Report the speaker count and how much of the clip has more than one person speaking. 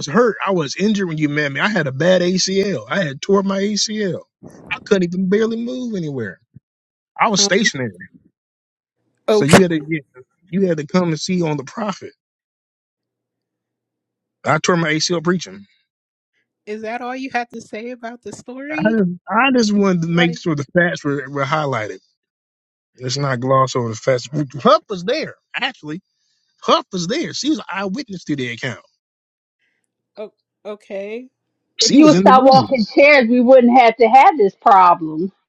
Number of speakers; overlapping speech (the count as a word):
three, about 5%